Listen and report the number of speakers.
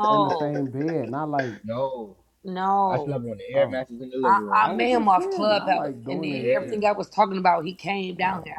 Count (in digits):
3